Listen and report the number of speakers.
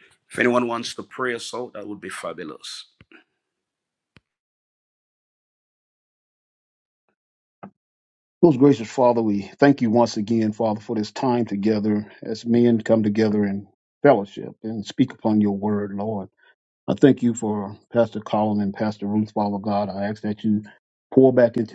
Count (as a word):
two